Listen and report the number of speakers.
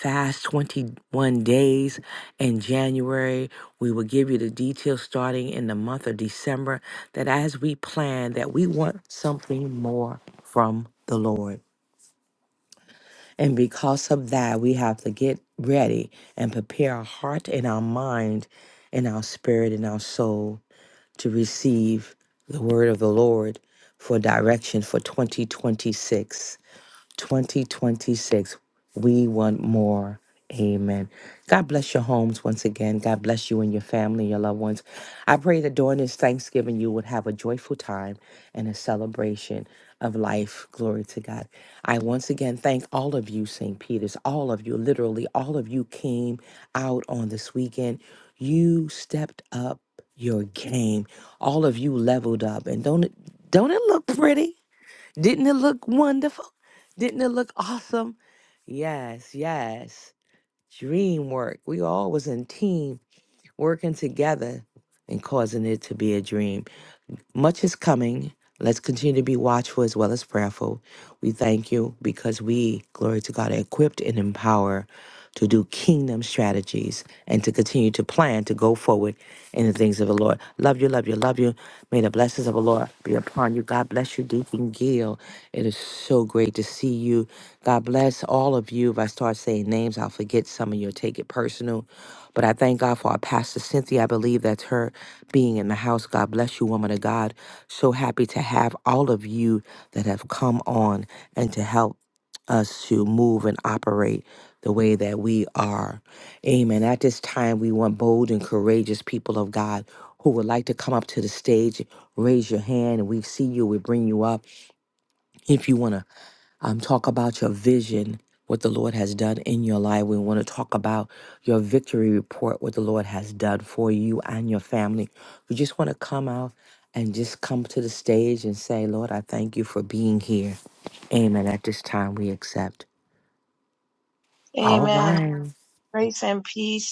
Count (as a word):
two